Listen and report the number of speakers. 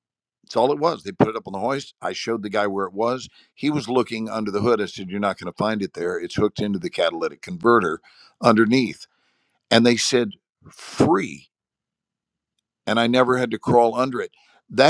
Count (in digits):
1